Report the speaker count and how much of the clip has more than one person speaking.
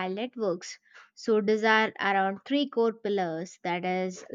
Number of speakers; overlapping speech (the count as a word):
one, no overlap